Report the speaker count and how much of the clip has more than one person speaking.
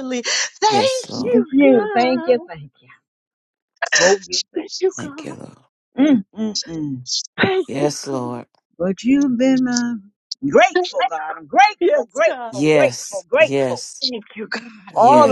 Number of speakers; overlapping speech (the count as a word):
three, about 30%